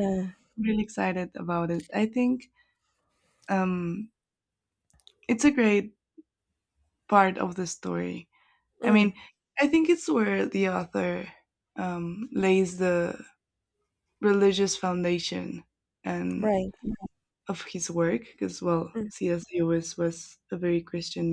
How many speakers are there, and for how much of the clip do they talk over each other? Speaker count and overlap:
2, about 2%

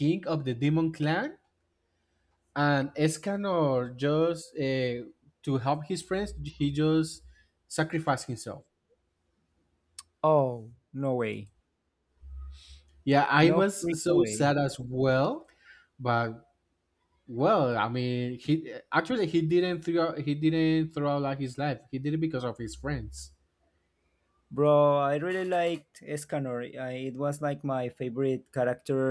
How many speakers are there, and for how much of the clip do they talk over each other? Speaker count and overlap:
2, about 4%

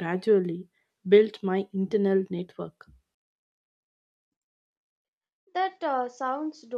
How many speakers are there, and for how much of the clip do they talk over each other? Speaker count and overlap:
2, no overlap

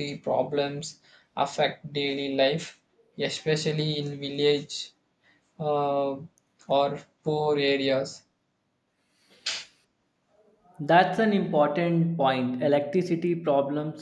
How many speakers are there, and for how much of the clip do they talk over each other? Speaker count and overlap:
2, no overlap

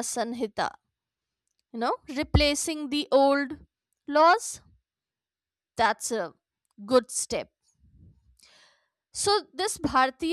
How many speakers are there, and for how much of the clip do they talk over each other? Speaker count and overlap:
1, no overlap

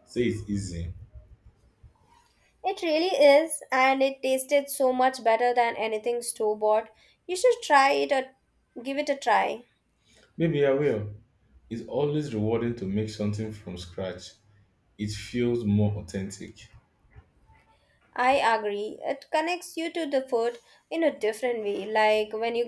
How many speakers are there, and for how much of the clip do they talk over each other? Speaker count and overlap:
2, no overlap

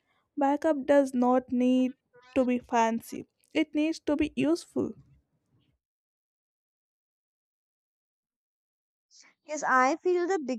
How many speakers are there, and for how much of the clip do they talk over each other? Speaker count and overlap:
2, no overlap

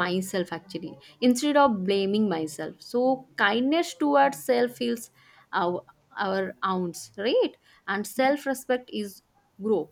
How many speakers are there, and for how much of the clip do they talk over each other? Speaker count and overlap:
1, no overlap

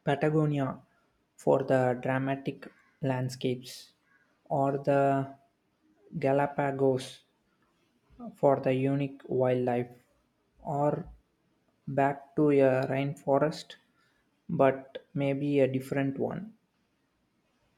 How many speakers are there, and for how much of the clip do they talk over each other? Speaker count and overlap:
1, no overlap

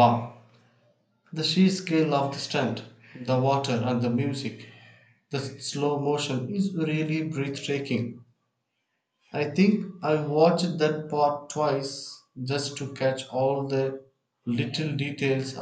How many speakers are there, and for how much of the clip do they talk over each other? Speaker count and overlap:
1, no overlap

